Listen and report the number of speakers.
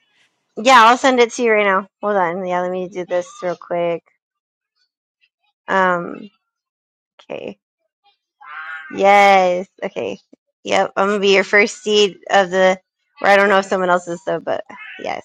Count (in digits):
1